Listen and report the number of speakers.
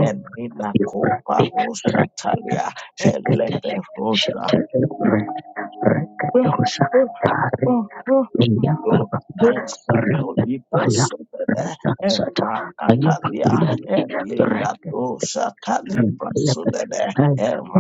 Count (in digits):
2